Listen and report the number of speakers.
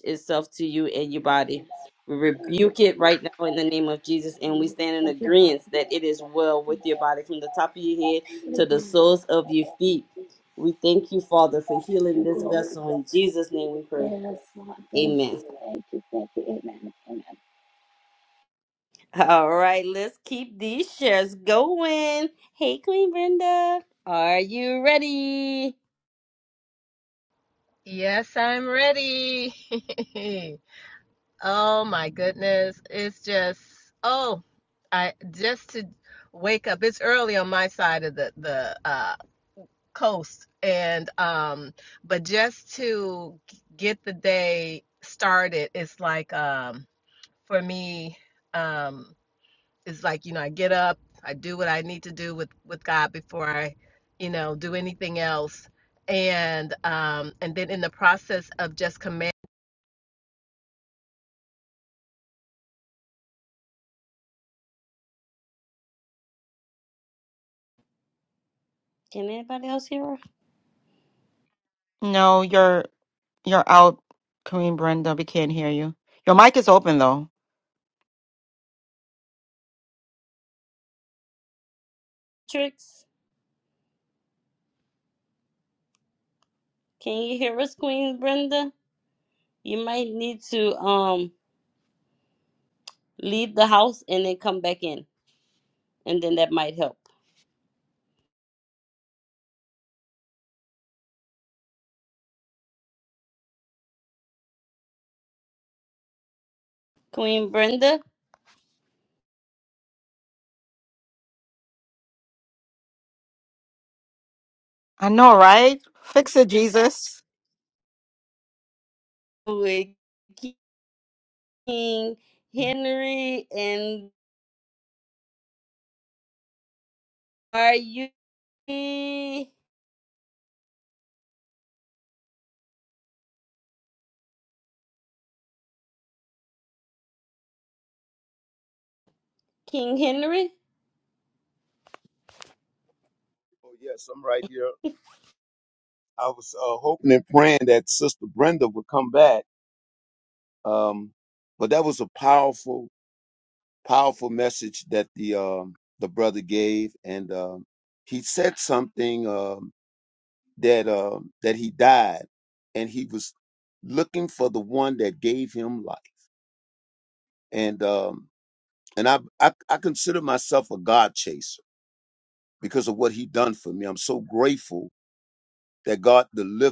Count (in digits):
5